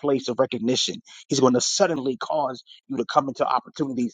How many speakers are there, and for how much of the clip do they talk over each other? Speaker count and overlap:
one, no overlap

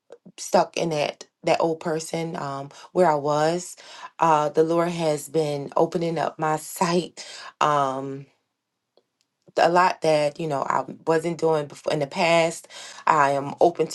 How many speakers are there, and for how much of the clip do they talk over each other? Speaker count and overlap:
one, no overlap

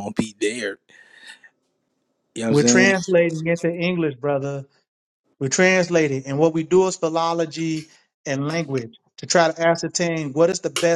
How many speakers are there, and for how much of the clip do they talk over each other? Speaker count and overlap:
two, about 4%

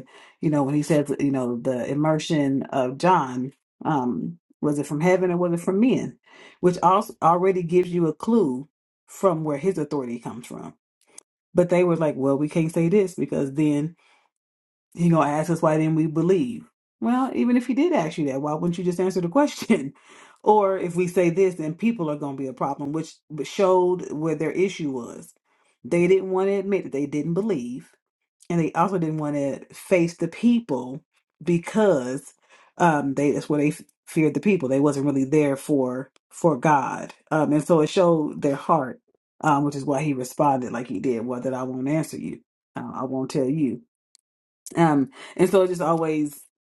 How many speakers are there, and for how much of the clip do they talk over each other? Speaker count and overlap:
one, no overlap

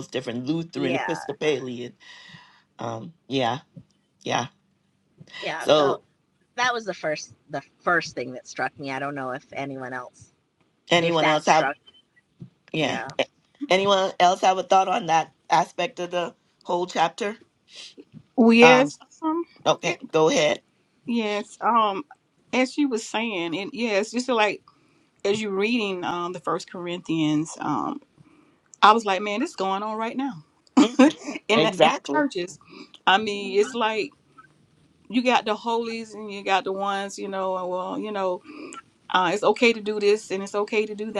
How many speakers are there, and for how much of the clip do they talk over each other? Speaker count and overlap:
three, about 8%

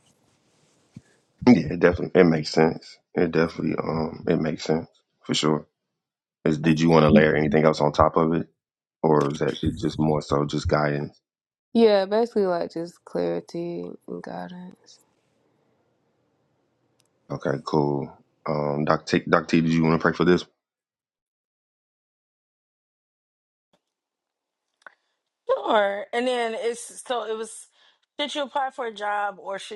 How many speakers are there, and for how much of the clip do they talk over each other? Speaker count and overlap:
three, no overlap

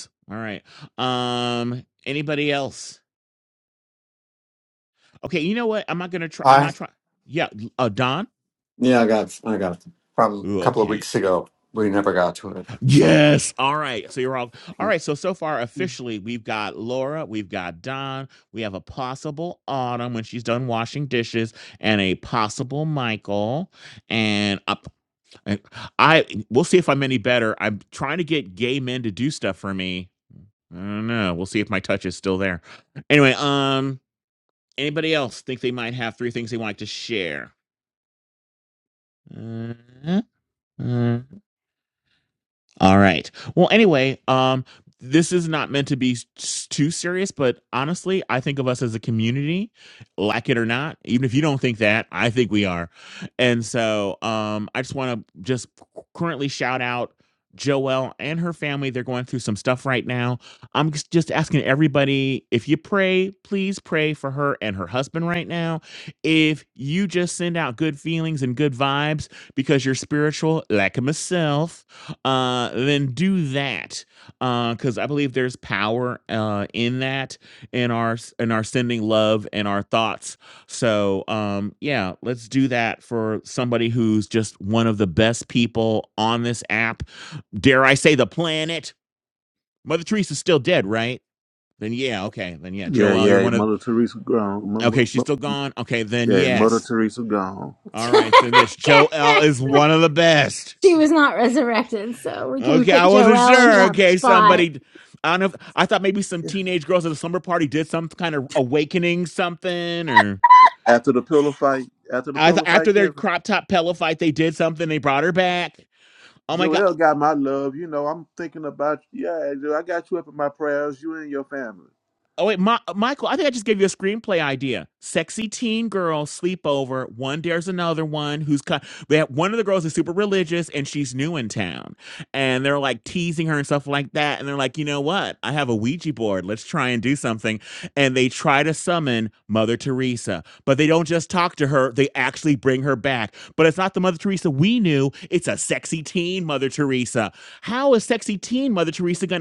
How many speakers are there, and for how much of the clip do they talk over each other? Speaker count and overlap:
four, about 4%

